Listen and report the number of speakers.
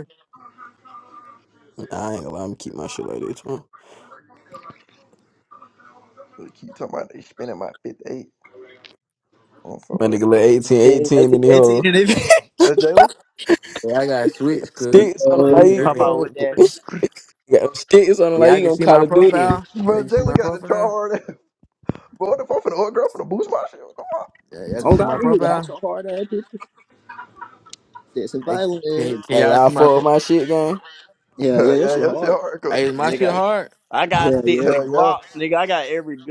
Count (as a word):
five